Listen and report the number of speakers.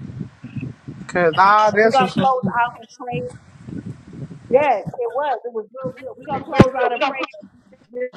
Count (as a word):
two